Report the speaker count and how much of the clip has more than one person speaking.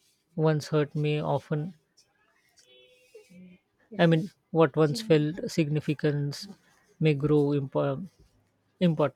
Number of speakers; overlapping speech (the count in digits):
1, no overlap